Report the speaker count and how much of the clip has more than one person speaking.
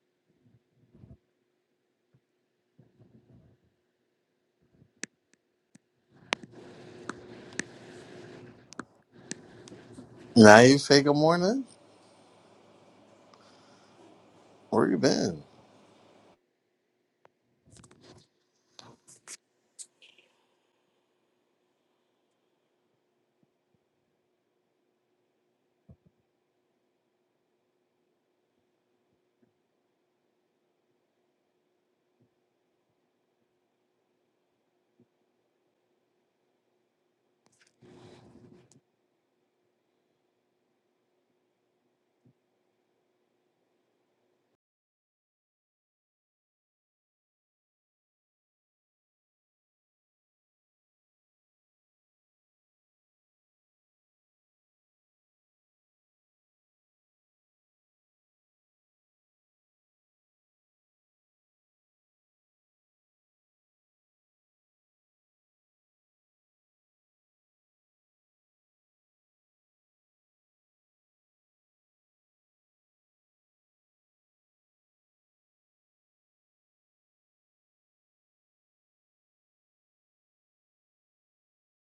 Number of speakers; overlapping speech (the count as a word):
one, no overlap